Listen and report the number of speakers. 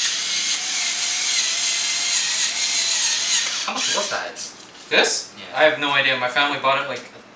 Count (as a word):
two